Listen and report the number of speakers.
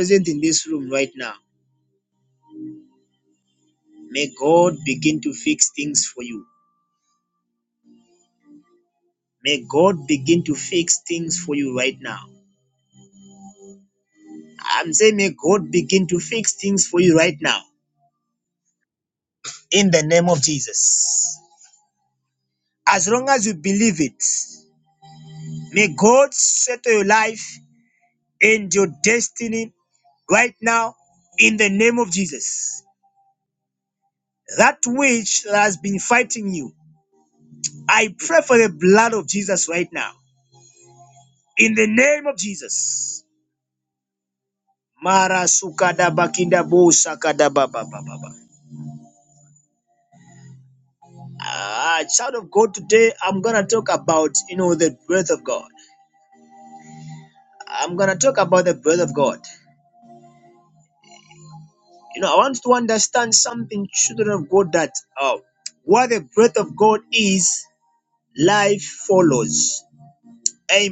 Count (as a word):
one